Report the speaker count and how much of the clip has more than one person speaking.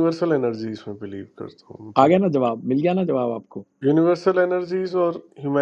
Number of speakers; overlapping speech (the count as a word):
two, about 2%